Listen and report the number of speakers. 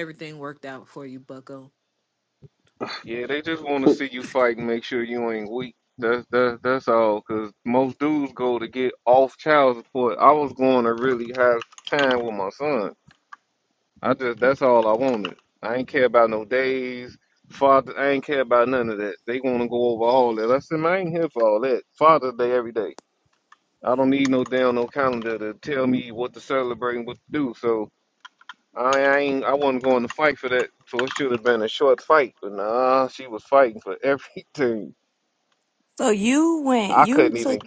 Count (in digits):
3